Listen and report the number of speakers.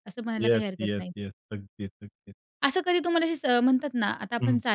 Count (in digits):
2